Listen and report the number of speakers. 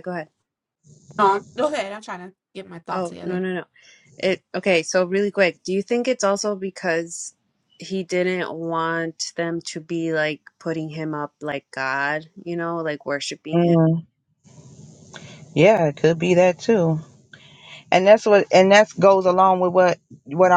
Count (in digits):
3